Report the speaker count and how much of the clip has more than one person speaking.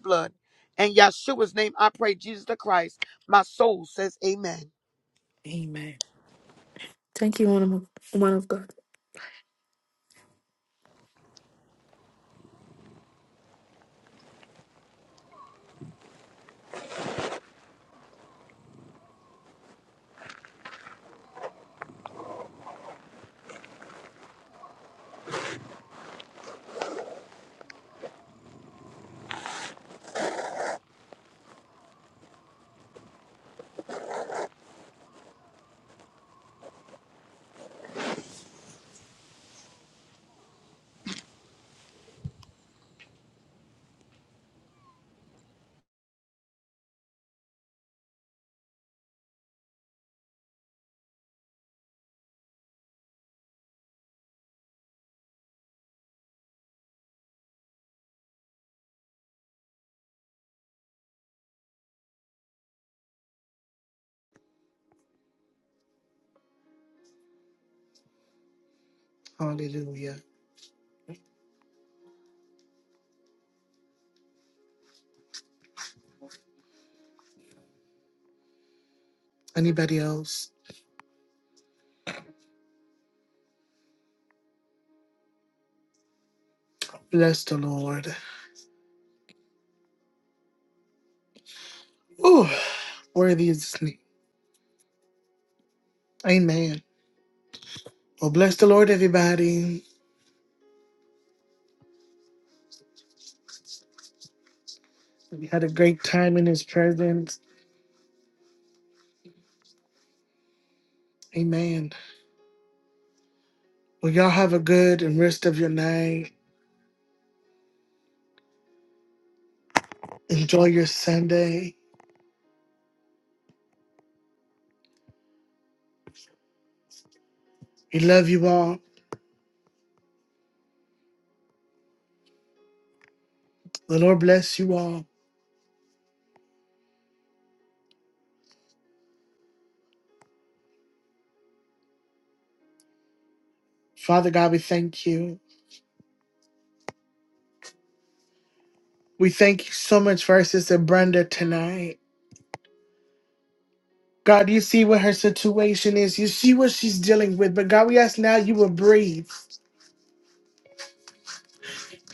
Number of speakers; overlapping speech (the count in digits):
3, no overlap